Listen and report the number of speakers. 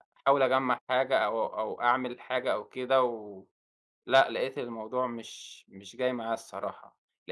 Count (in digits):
1